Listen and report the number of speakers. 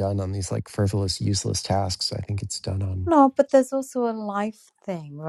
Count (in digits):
2